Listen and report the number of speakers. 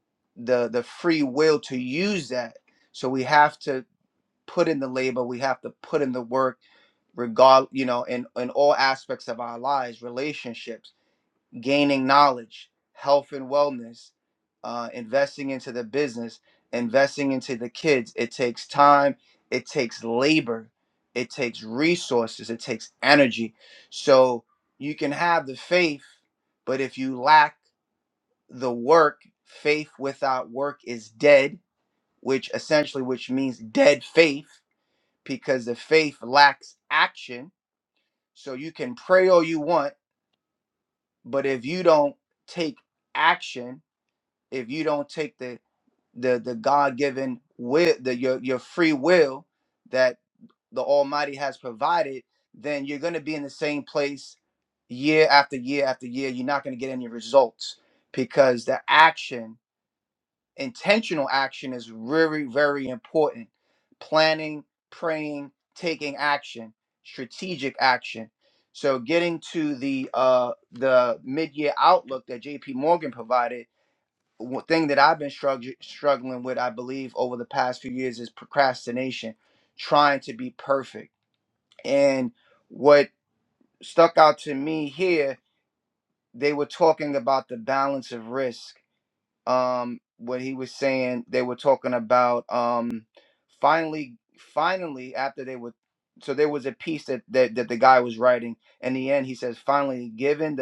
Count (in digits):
1